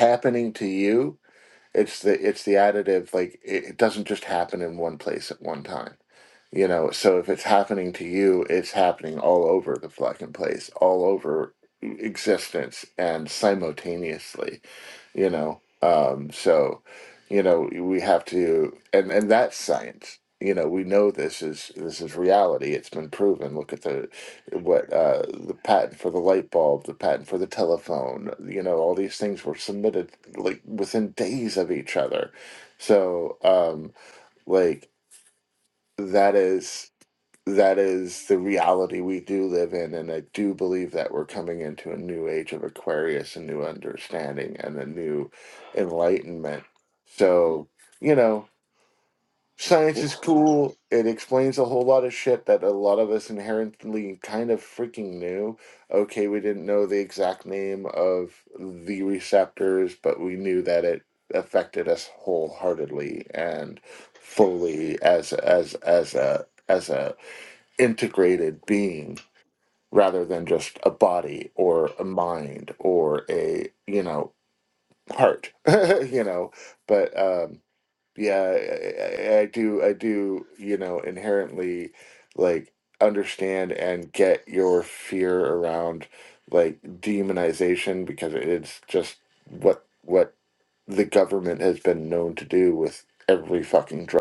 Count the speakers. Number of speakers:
one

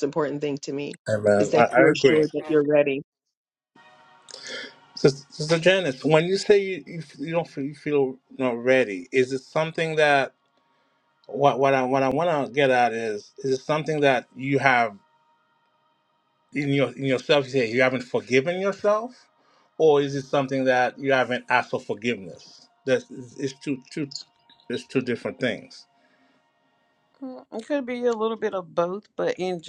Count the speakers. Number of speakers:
three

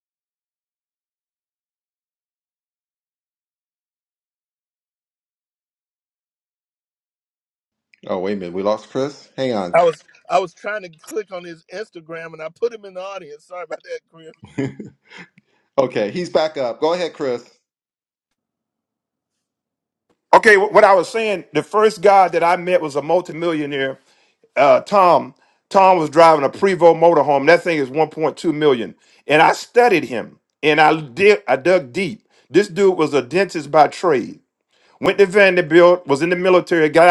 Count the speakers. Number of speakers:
three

